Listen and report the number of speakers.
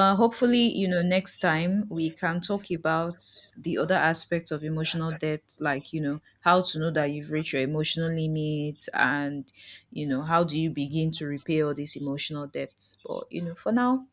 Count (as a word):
one